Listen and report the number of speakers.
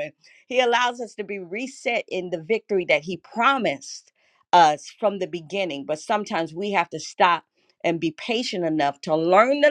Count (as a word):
one